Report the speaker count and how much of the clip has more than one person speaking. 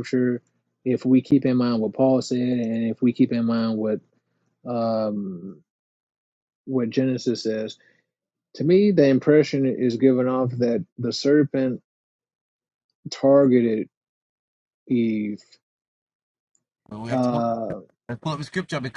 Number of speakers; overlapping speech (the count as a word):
two, about 2%